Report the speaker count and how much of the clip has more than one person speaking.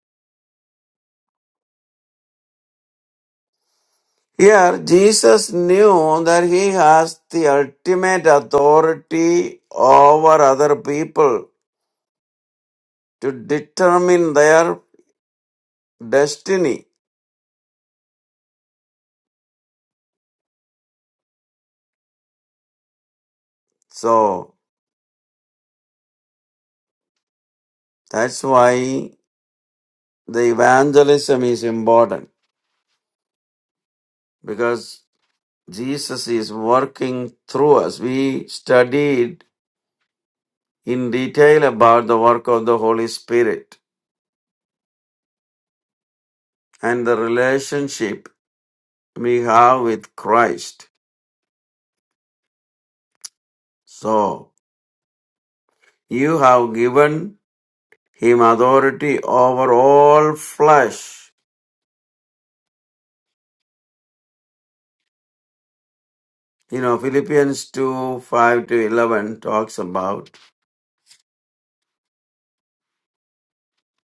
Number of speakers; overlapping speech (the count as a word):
one, no overlap